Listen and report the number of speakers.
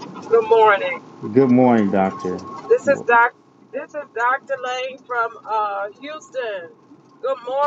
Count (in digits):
2